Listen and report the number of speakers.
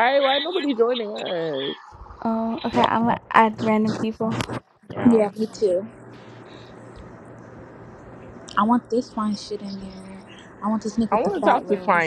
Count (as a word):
three